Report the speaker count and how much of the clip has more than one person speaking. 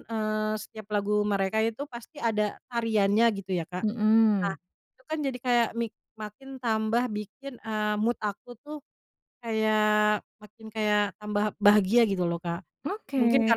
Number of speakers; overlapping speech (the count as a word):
two, about 1%